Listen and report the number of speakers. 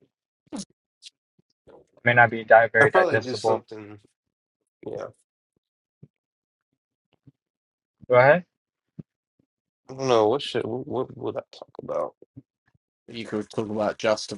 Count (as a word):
three